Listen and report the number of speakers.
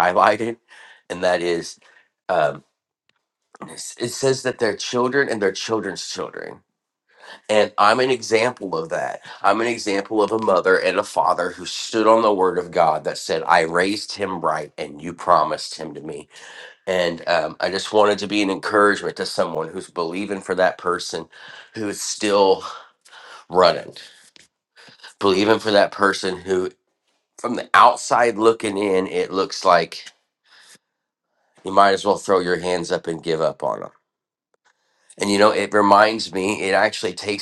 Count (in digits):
1